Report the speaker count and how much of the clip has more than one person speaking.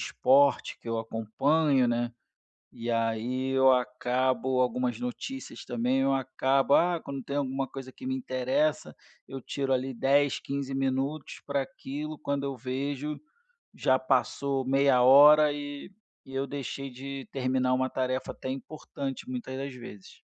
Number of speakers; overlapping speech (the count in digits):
1, no overlap